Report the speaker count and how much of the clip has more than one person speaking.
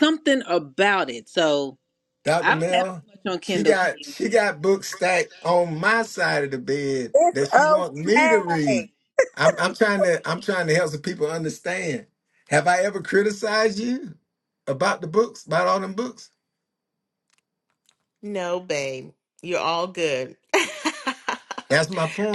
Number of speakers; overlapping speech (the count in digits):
3, about 12%